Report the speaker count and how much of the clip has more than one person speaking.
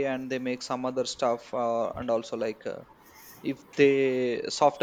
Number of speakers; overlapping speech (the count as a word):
one, no overlap